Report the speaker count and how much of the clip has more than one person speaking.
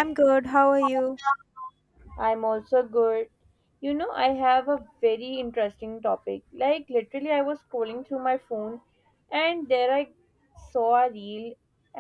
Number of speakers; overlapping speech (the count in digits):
2, no overlap